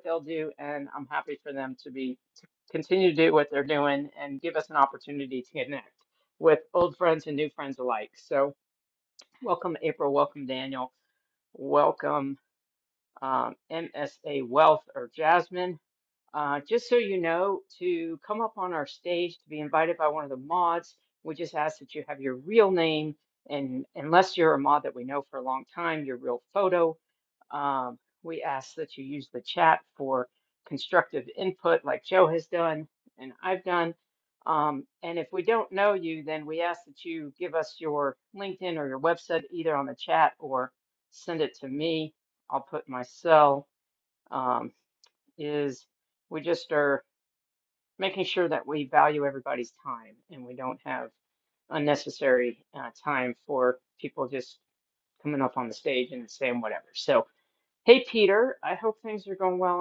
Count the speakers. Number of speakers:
1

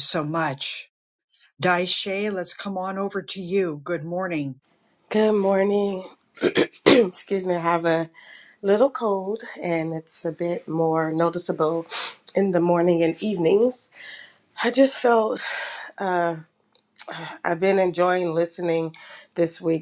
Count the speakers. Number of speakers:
2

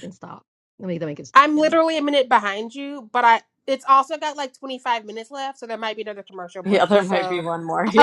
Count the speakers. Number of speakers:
3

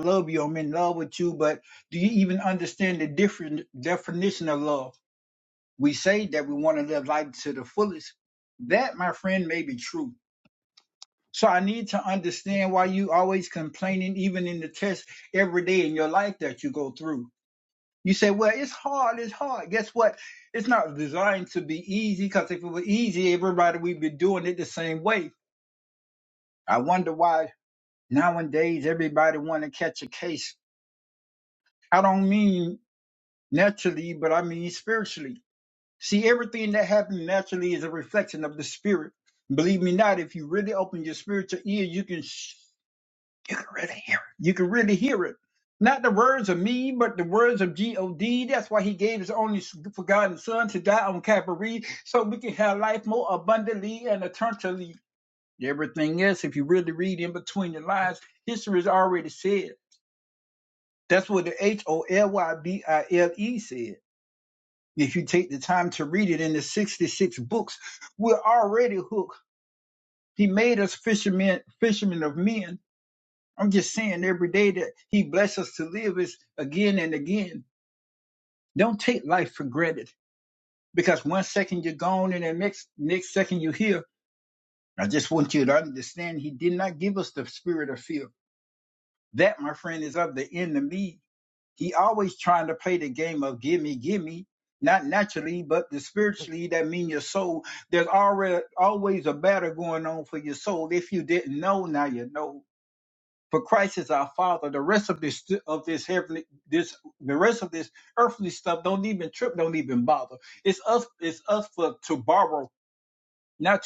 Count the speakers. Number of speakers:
1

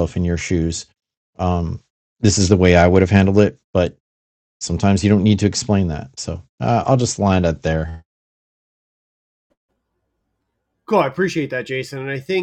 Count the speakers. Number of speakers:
2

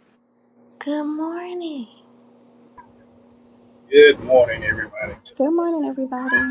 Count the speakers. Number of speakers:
3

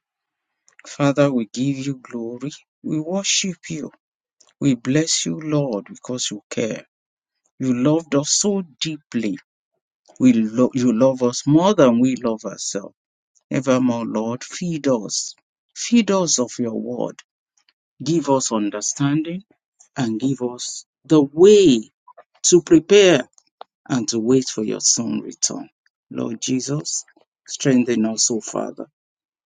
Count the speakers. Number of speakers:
1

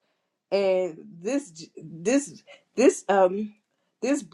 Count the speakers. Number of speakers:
1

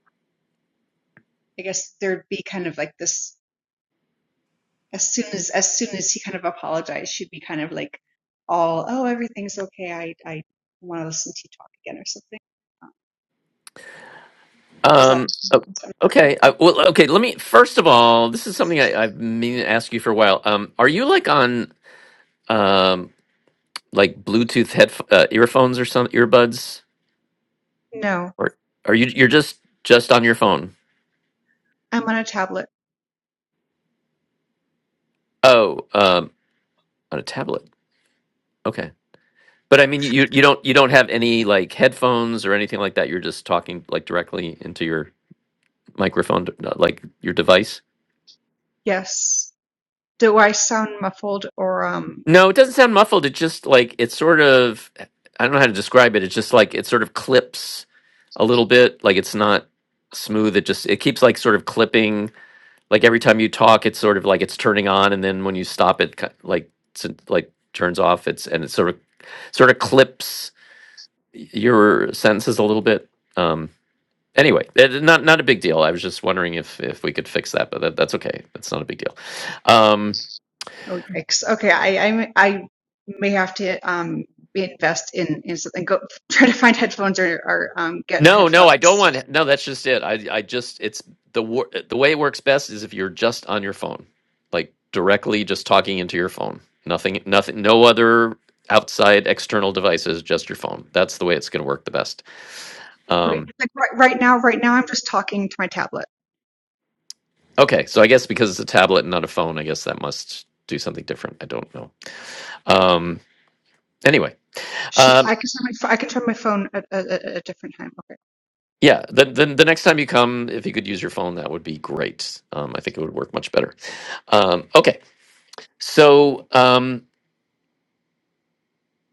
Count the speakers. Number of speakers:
2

